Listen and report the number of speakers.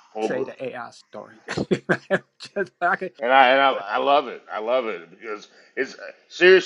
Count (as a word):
two